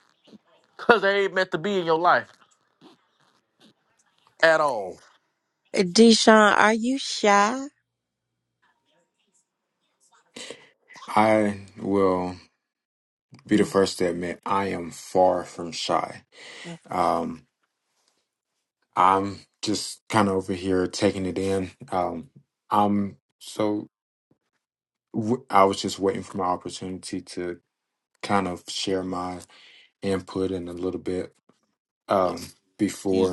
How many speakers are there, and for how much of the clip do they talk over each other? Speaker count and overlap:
3, about 2%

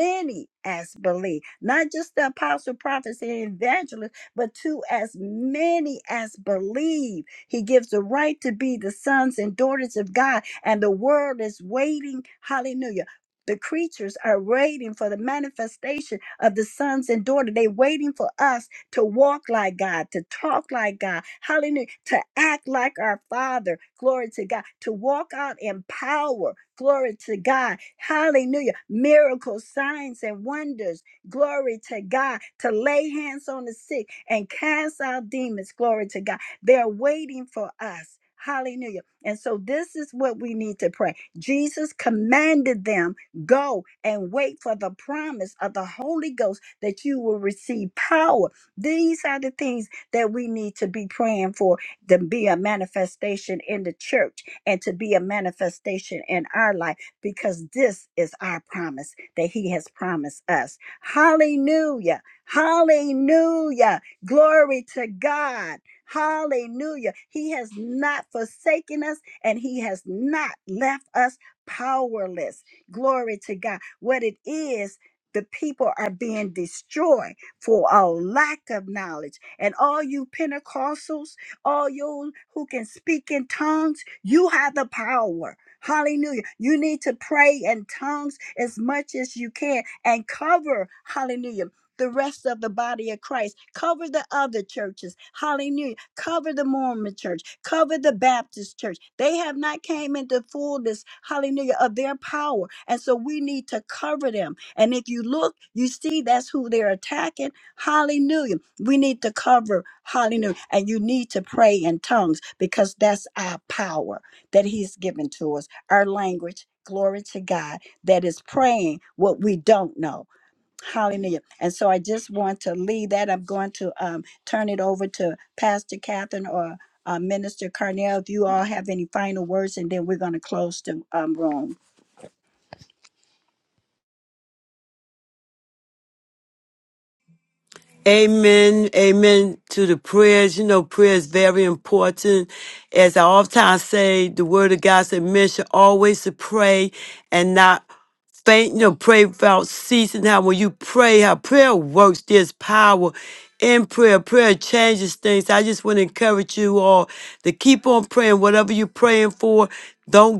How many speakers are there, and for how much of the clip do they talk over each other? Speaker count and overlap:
2, no overlap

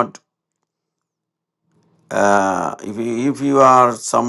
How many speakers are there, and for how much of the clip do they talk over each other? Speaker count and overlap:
1, no overlap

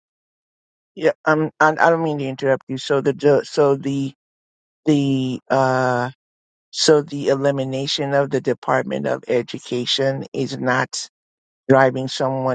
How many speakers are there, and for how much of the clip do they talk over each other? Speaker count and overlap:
1, no overlap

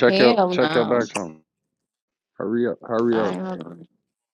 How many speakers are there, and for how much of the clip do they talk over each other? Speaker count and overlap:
2, about 28%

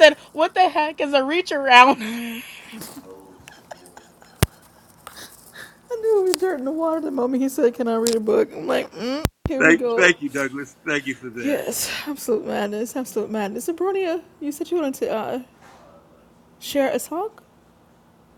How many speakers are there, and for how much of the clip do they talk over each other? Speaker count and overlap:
3, about 5%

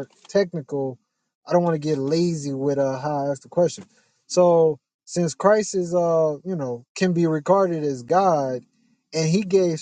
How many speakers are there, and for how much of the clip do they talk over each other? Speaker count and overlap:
1, no overlap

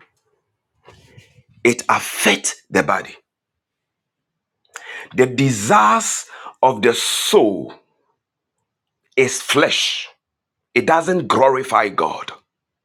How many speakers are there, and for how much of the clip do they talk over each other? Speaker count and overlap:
1, no overlap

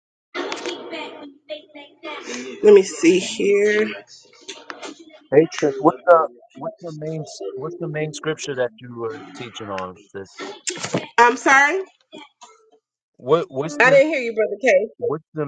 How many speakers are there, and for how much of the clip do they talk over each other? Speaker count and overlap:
2, about 2%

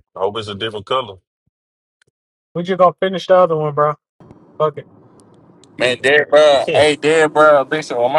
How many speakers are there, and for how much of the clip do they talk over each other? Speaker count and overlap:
3, about 7%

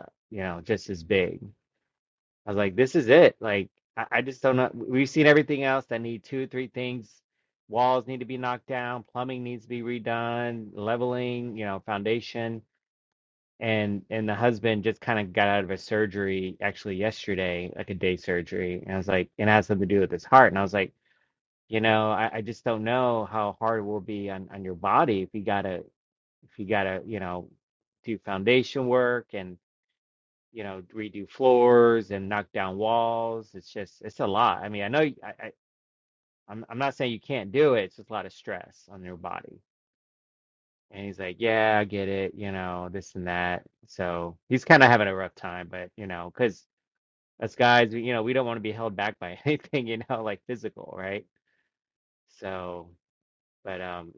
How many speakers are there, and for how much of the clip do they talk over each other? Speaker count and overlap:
1, no overlap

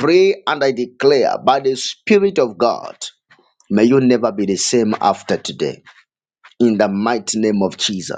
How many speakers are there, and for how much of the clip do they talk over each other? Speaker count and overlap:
1, no overlap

